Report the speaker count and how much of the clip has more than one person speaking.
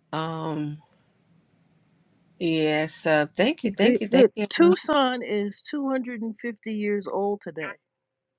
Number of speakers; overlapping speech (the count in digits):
2, about 10%